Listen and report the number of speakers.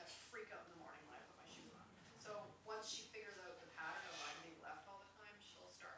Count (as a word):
one